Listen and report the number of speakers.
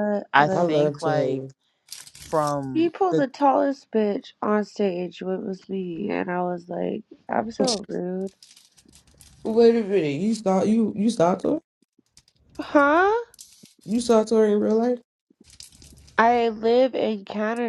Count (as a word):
three